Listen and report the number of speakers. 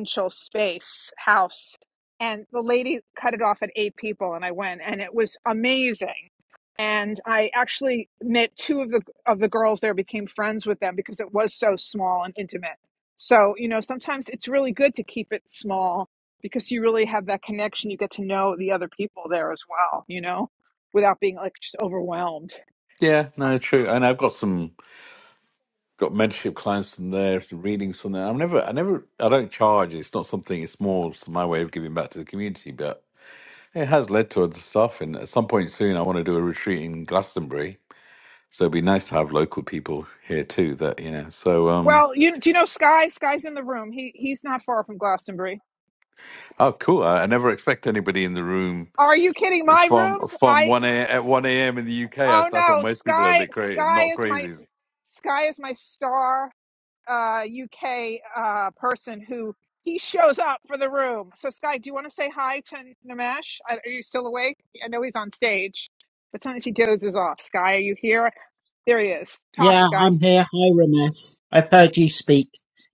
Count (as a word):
three